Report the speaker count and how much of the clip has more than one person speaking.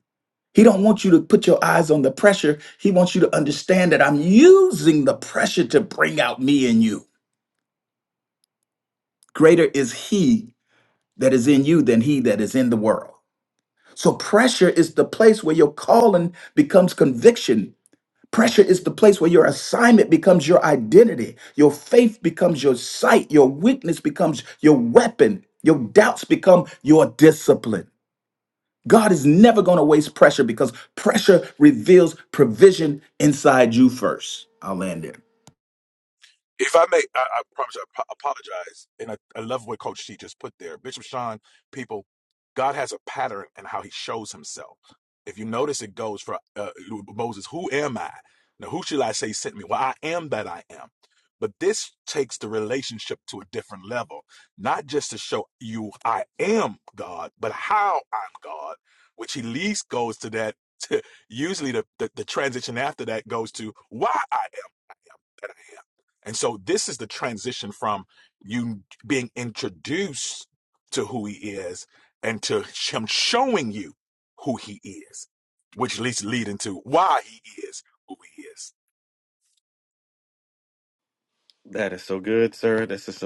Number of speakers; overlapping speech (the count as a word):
three, no overlap